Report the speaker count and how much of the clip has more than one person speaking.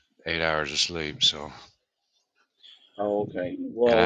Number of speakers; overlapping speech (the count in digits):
2, about 5%